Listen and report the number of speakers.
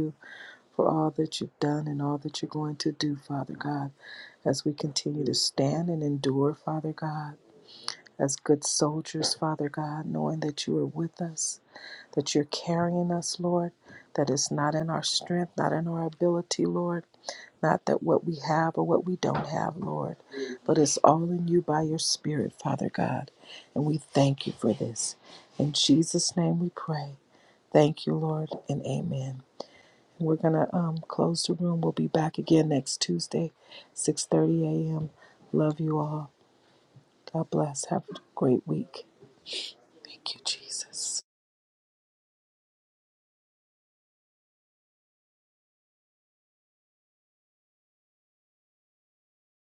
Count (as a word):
one